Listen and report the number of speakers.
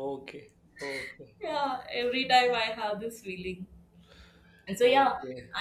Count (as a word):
two